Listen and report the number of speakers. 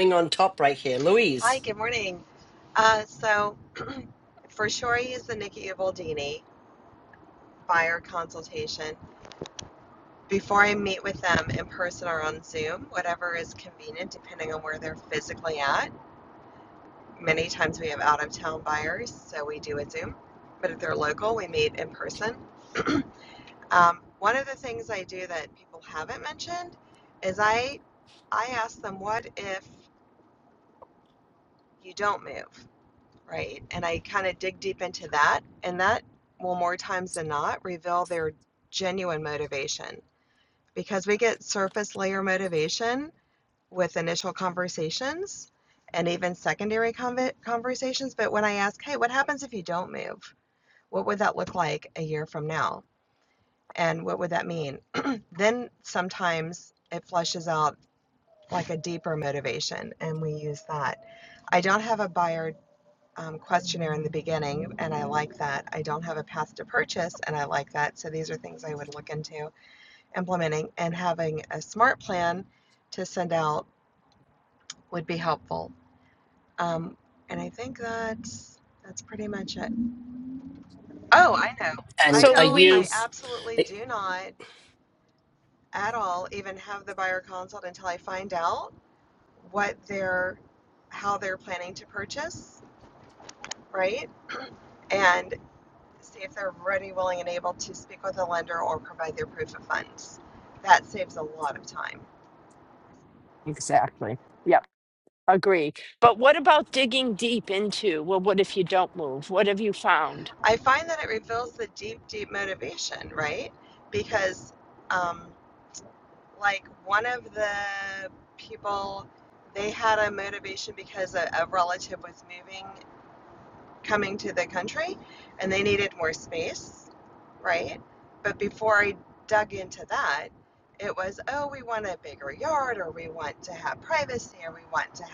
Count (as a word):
three